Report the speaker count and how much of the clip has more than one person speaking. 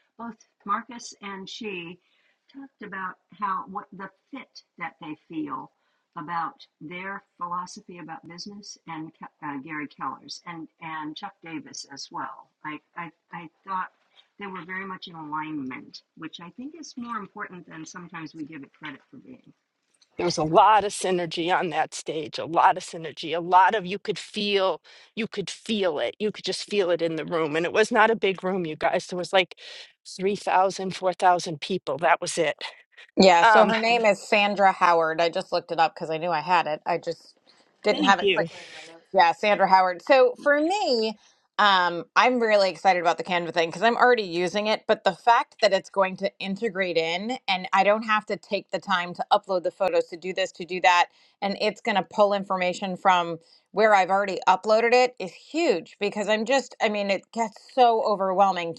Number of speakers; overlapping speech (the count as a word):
three, about 2%